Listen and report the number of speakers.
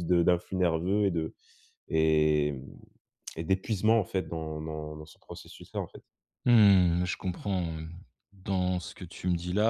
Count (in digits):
2